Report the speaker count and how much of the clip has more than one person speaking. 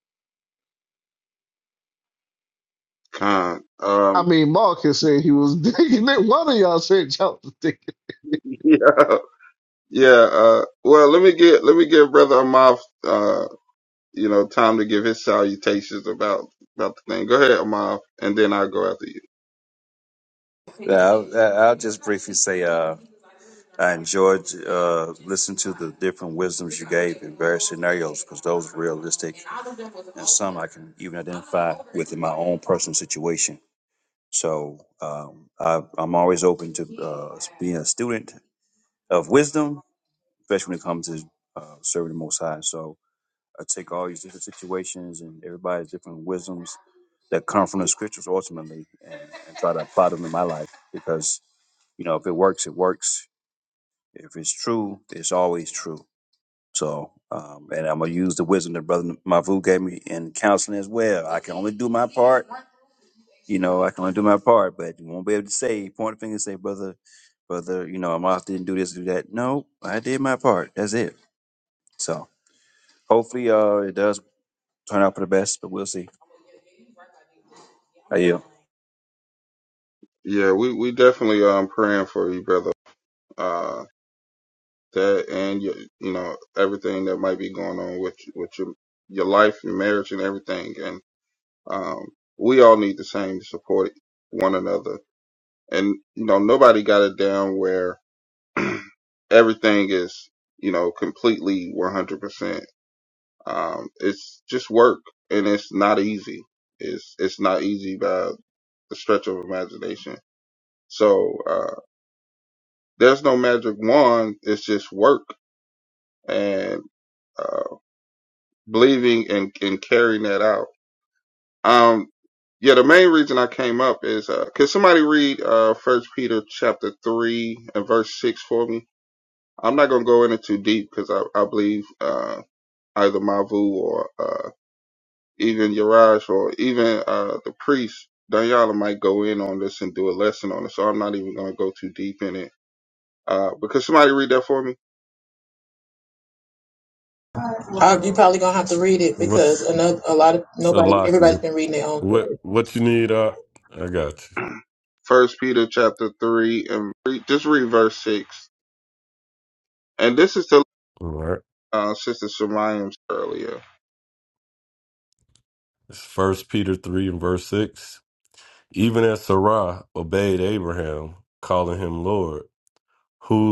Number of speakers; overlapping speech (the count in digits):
5, about 1%